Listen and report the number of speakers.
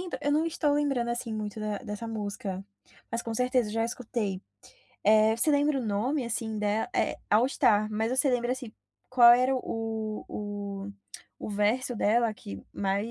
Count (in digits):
1